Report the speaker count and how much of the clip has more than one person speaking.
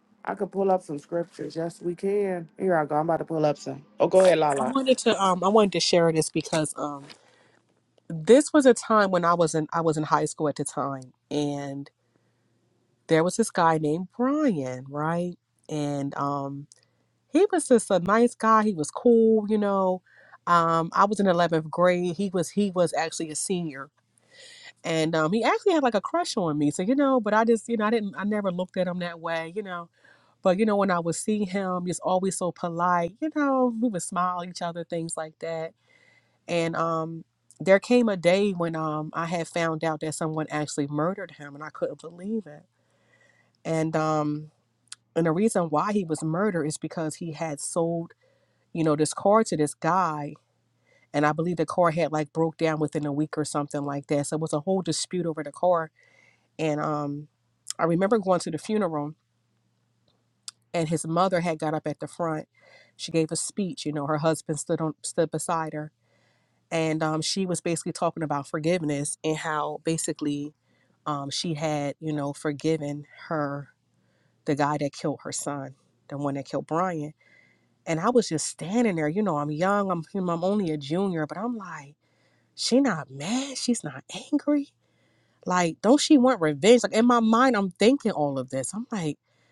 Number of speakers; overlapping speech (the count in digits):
2, under 1%